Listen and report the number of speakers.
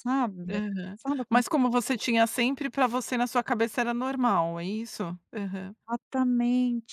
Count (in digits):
2